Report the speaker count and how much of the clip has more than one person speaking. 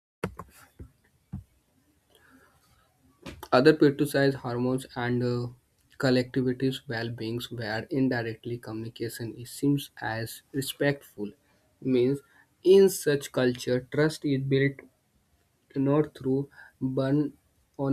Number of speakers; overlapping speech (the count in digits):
1, no overlap